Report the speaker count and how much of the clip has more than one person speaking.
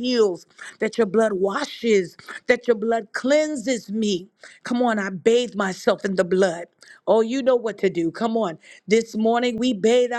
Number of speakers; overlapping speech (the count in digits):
1, no overlap